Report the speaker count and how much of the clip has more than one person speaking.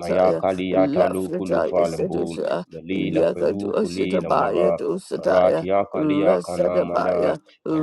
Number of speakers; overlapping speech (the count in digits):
2, about 73%